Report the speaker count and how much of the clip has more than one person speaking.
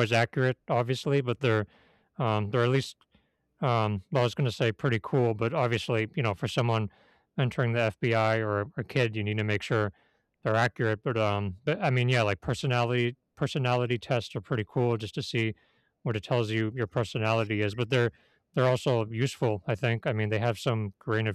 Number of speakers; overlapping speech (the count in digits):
1, no overlap